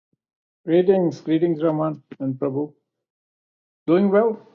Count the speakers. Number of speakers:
1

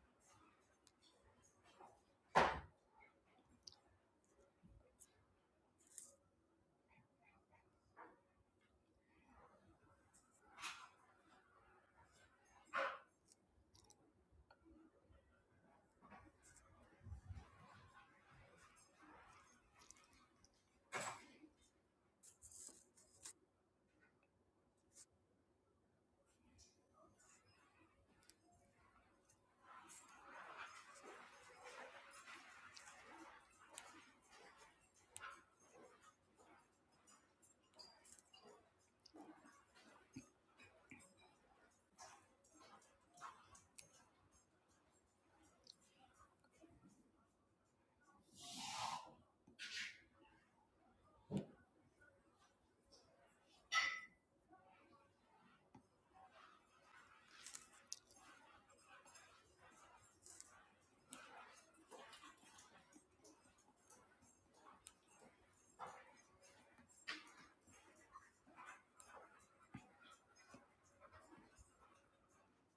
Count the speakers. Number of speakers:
0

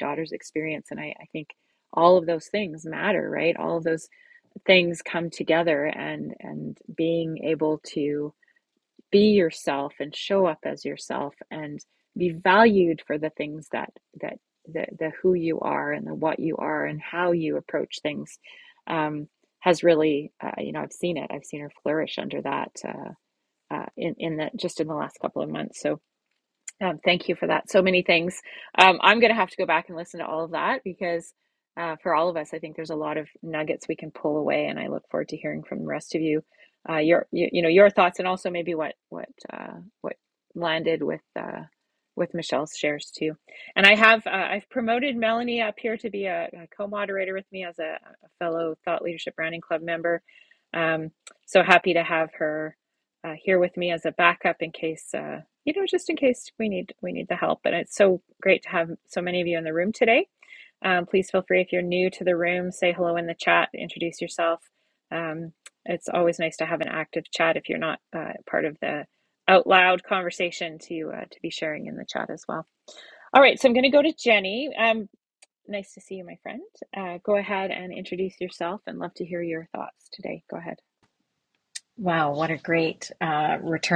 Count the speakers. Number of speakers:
2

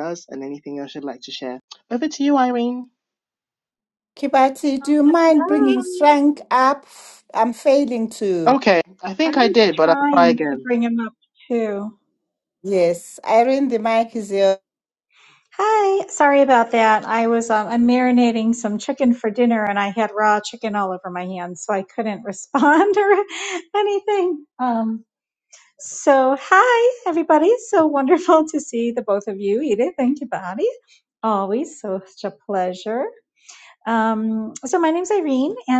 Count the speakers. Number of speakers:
3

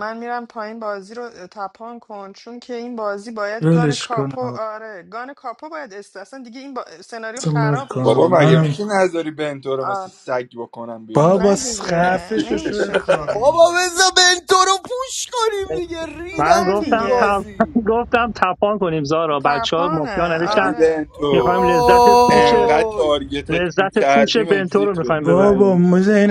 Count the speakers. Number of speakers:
5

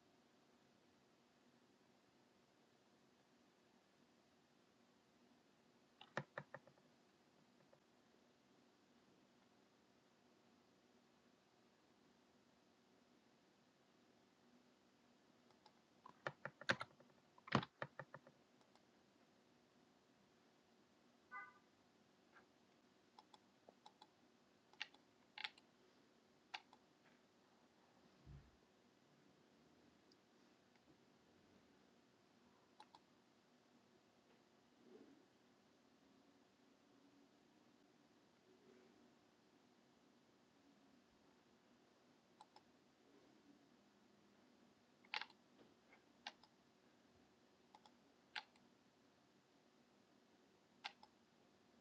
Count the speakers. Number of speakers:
0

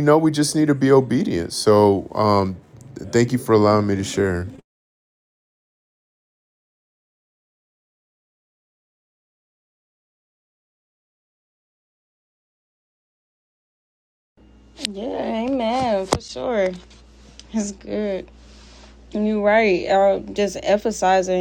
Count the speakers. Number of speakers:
2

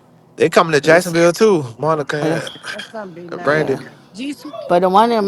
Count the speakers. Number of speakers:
3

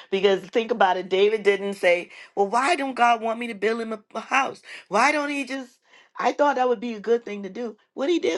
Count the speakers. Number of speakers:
1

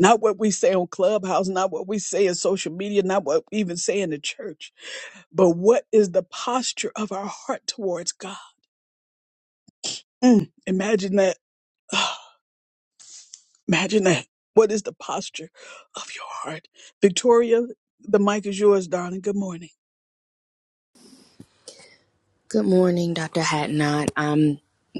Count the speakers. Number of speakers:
2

